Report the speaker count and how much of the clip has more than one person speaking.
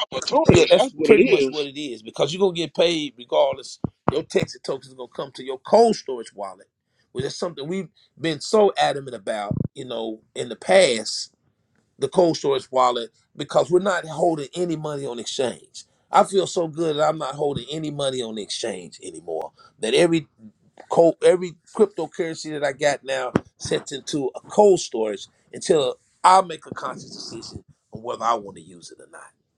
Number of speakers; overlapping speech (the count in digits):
2, about 4%